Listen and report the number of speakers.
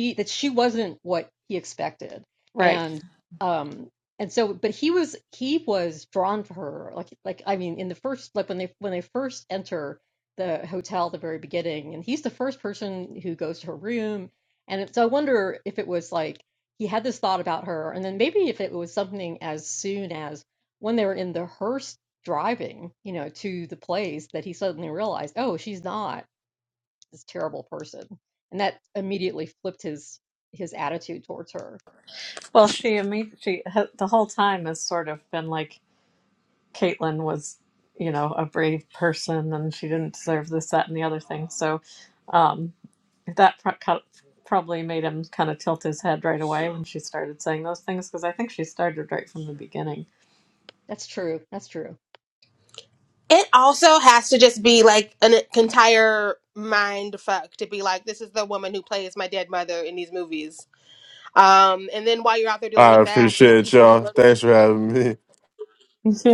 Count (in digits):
4